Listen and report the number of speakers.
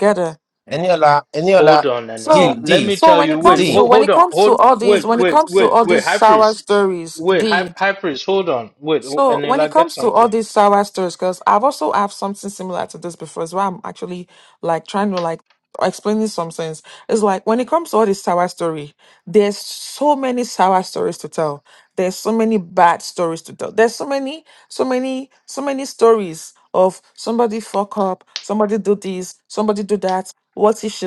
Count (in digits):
3